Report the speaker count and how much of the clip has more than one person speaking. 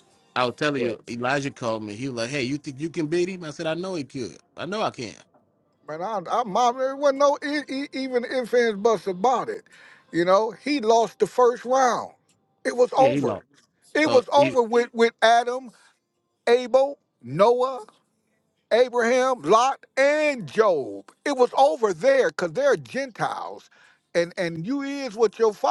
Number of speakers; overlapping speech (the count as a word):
two, about 4%